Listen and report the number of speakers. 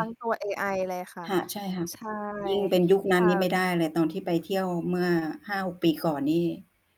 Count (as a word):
two